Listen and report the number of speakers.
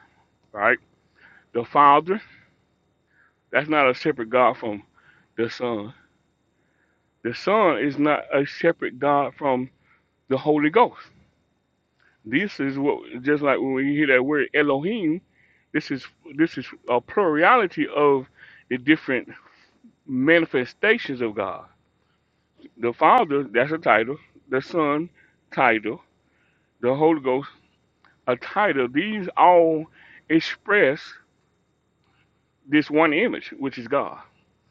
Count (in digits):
1